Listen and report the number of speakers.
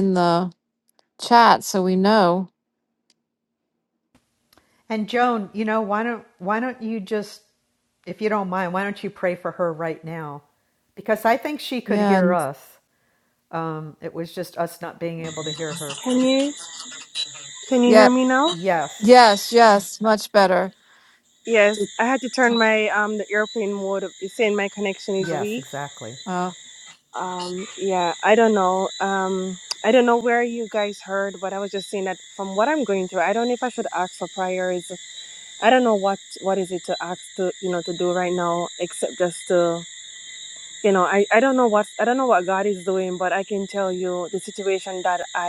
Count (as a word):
three